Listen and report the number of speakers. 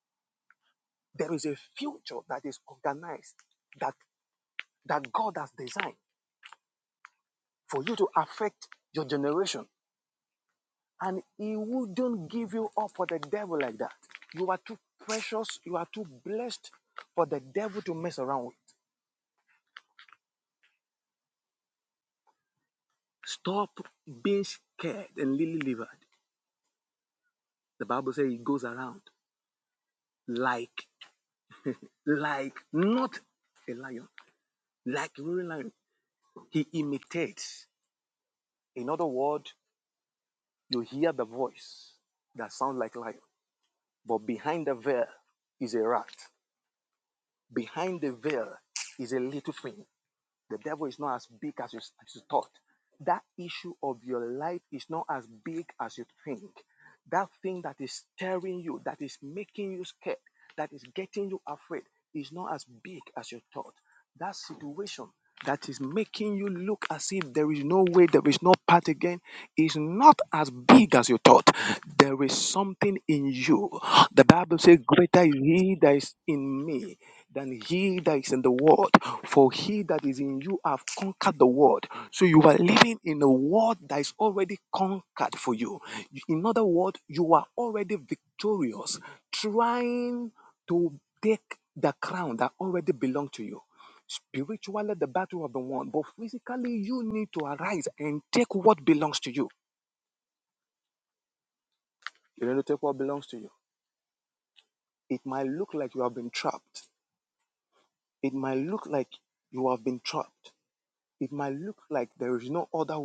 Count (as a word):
one